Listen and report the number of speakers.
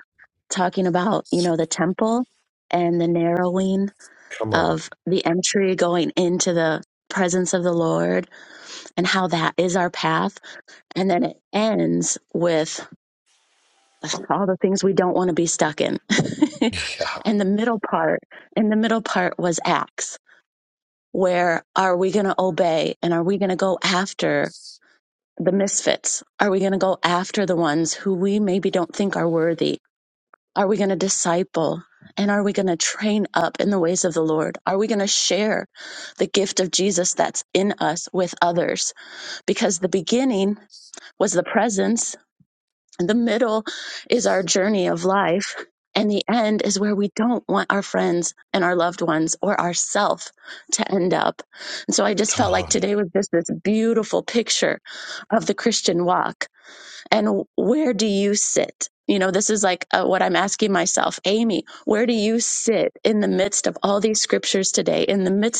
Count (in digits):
2